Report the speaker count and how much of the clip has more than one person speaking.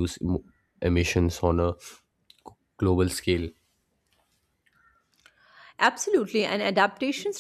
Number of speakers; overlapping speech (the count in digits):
2, no overlap